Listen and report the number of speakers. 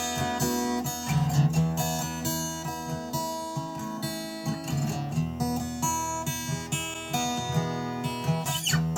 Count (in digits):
0